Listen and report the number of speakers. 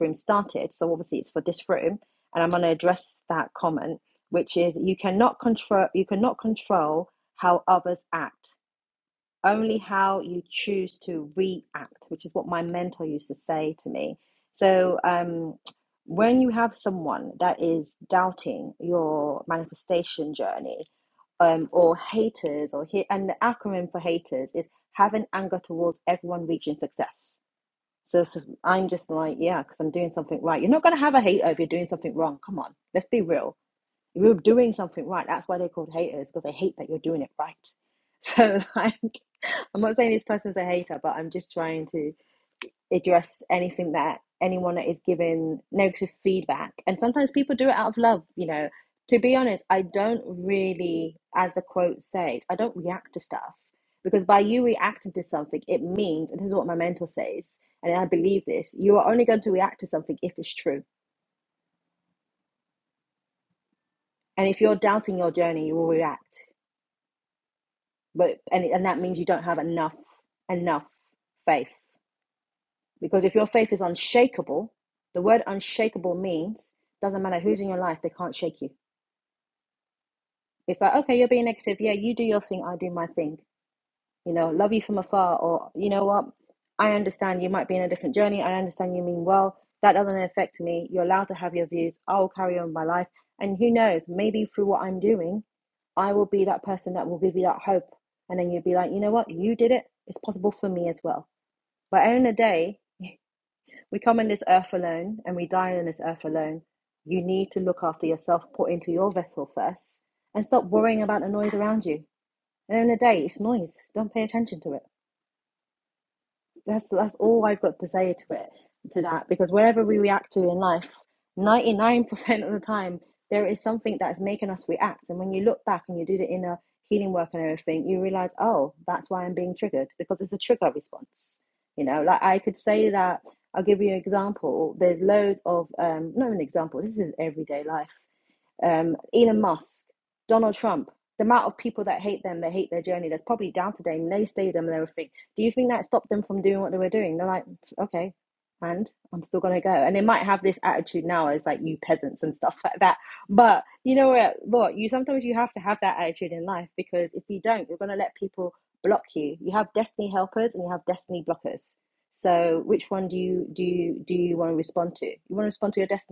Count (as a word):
one